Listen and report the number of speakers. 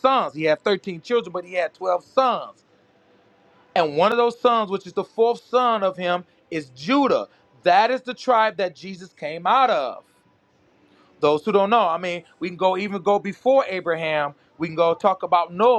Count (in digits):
1